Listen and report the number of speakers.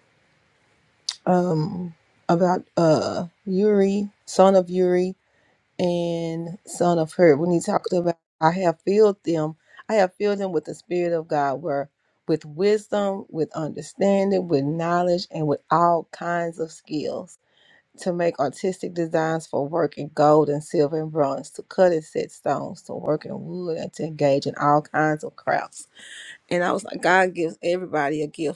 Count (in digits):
1